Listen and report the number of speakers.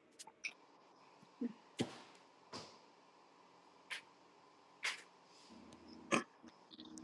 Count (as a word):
zero